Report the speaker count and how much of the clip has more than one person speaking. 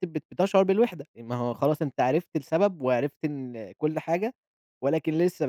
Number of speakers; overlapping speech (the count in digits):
1, no overlap